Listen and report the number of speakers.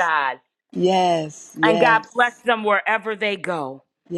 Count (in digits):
2